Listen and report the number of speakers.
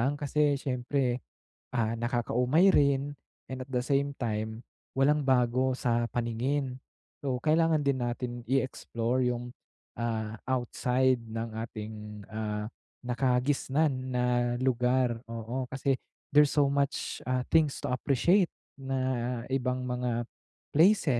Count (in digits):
1